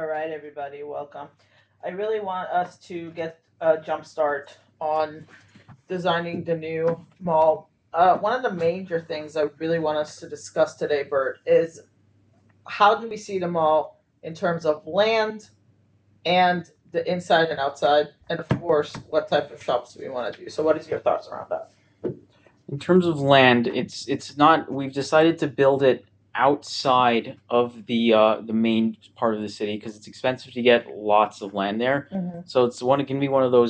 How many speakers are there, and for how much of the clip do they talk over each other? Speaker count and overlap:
2, no overlap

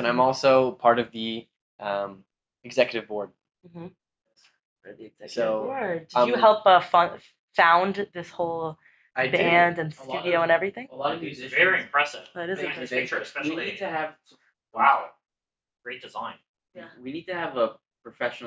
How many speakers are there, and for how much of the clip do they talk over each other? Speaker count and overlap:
4, about 26%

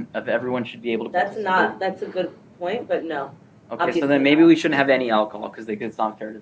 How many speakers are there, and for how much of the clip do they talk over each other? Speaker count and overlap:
2, about 20%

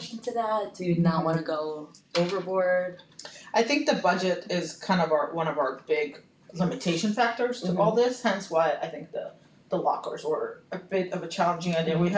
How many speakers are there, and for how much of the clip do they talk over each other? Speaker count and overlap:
2, about 9%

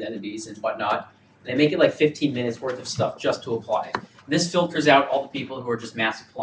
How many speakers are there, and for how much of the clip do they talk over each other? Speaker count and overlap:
1, no overlap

